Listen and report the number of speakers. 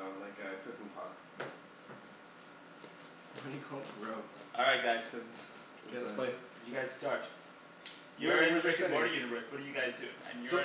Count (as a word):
three